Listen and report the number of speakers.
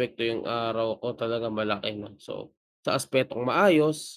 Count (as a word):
one